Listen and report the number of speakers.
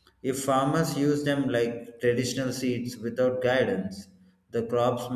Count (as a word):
one